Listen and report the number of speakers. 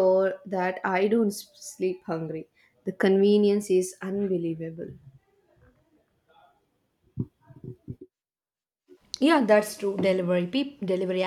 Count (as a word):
two